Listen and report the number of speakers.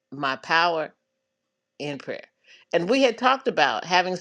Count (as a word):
one